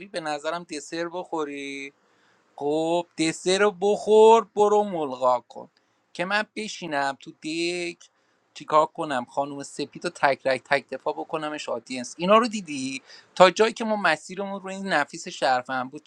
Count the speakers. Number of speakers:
one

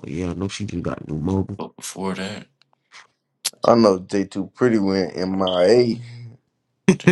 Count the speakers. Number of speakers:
three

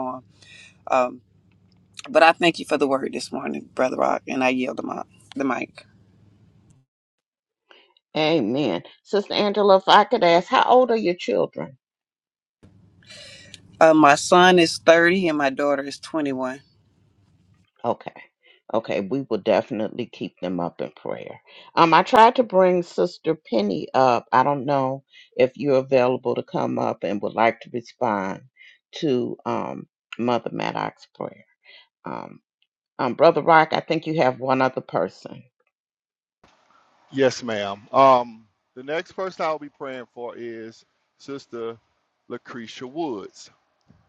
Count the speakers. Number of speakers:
three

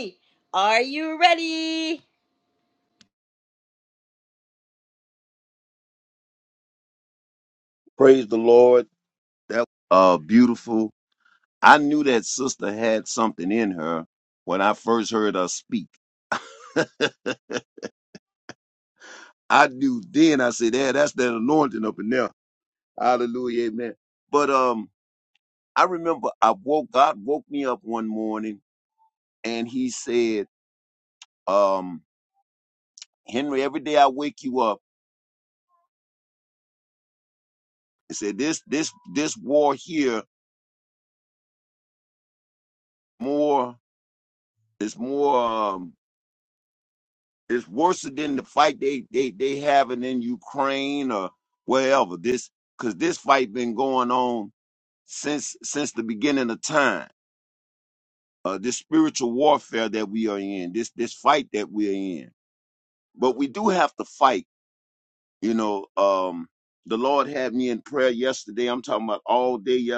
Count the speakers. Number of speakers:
two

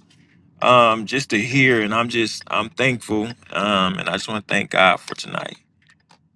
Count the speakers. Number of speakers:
one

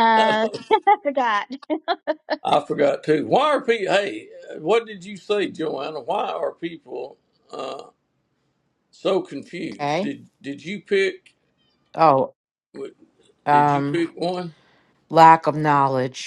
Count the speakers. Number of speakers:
three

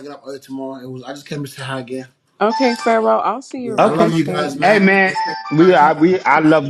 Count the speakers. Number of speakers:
three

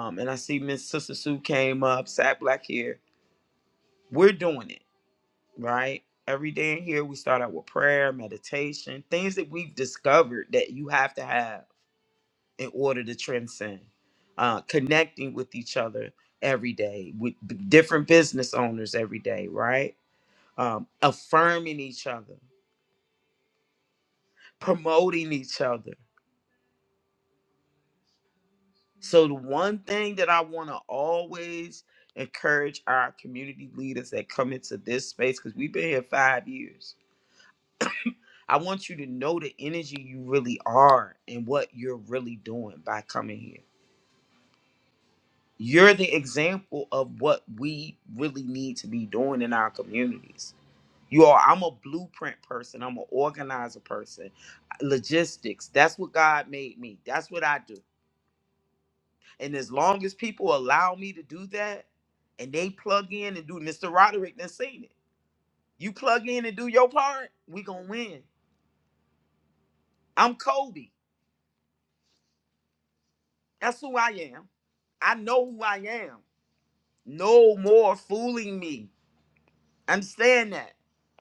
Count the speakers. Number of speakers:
one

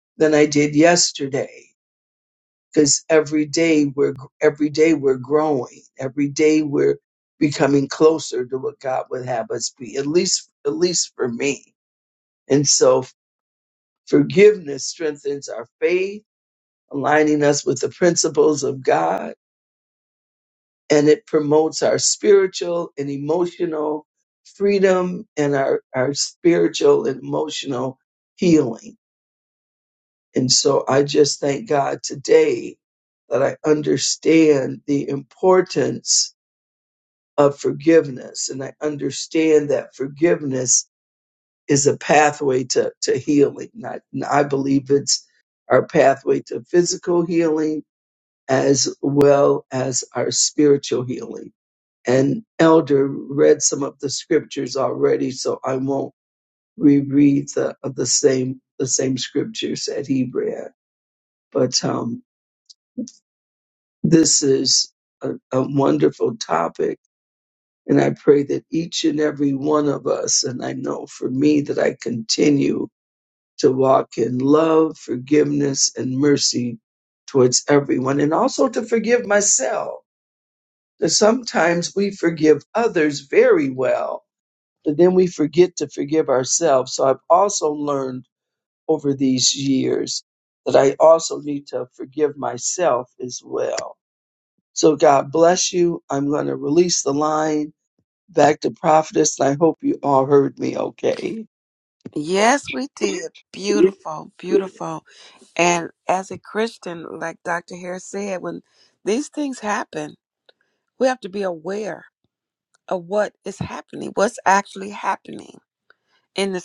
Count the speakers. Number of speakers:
two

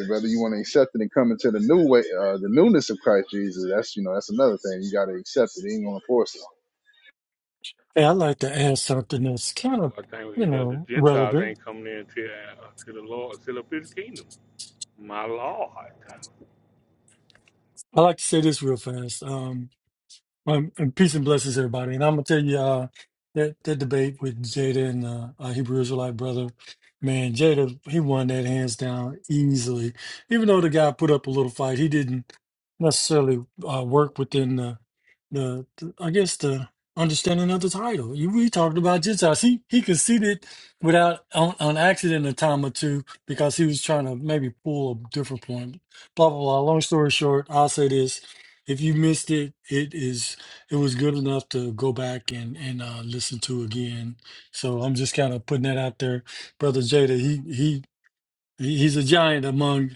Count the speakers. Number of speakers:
three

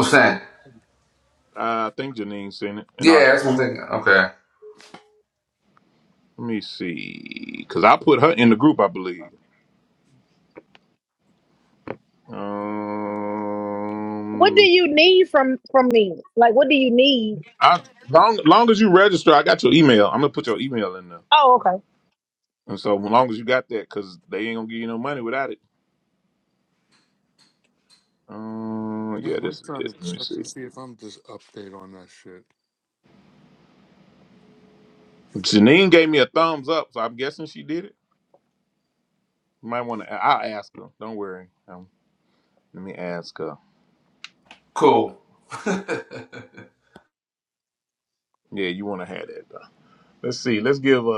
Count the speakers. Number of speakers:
four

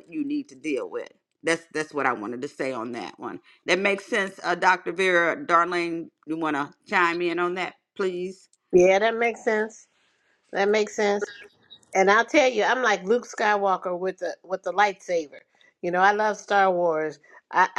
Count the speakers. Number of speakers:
two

